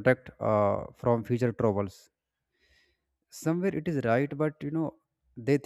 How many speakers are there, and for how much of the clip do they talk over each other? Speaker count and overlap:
1, no overlap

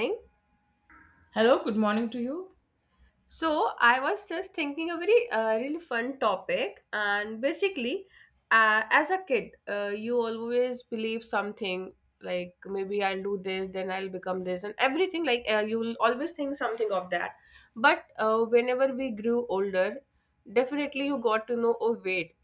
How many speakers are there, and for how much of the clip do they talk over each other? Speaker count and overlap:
2, no overlap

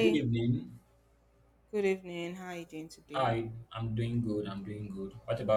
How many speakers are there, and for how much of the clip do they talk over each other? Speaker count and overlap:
2, about 7%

